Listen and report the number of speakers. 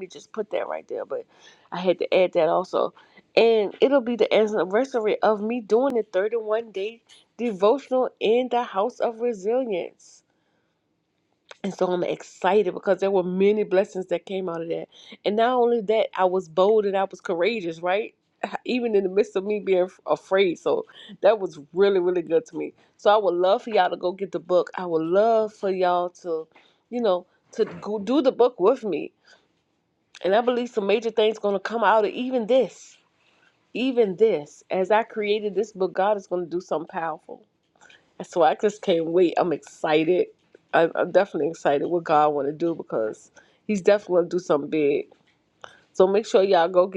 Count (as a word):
one